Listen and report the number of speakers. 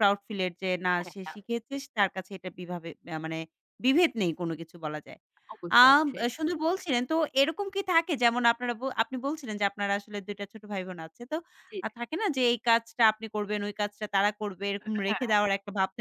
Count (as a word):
two